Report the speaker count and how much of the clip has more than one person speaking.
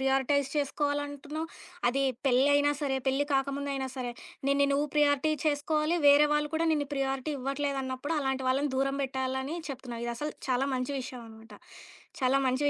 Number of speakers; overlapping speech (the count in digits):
1, no overlap